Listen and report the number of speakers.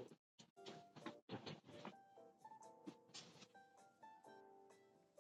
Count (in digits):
0